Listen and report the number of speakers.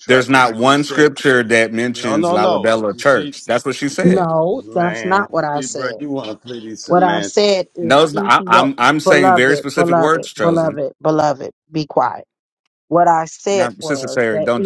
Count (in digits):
3